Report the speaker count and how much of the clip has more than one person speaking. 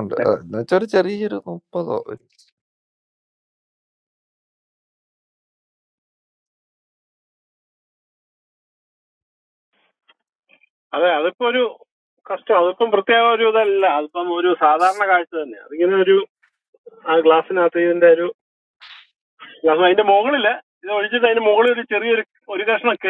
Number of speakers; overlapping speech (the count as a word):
two, no overlap